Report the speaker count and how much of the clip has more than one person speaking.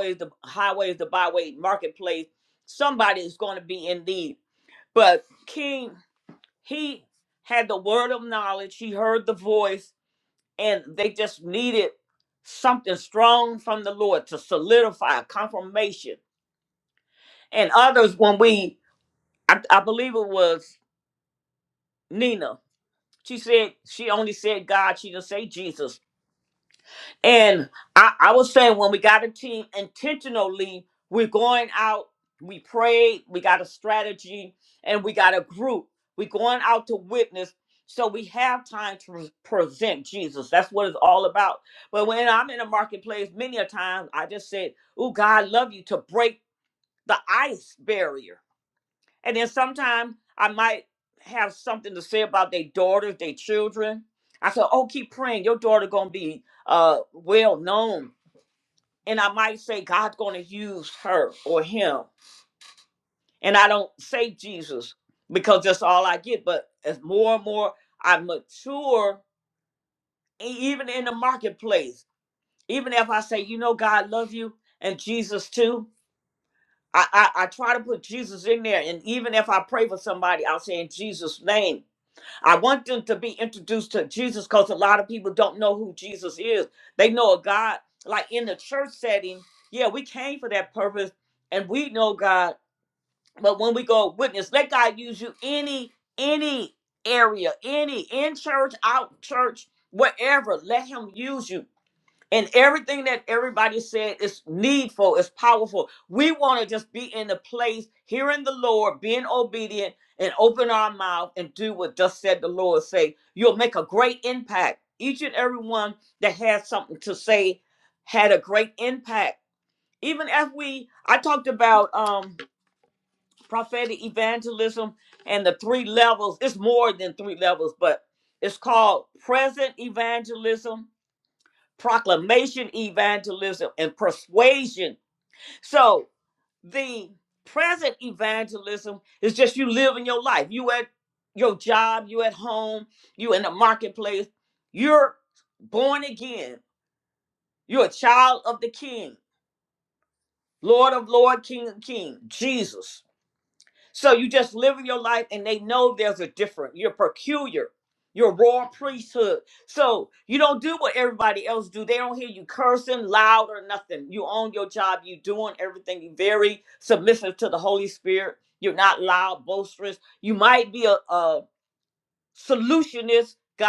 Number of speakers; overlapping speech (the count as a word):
one, no overlap